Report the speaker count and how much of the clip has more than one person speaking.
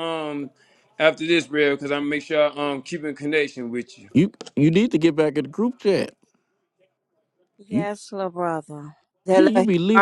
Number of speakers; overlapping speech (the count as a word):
three, about 8%